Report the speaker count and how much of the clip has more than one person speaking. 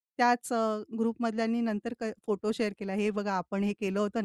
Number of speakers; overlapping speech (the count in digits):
1, no overlap